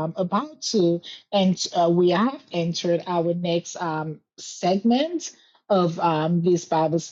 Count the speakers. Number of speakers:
1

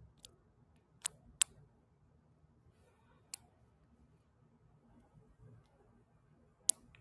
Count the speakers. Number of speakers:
0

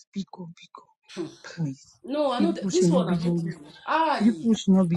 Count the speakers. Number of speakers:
2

